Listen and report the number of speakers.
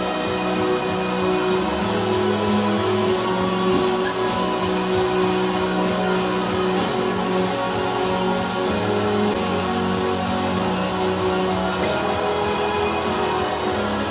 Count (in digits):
0